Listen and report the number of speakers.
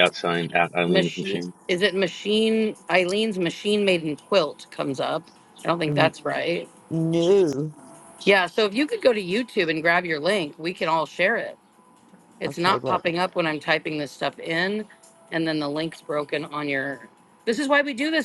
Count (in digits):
3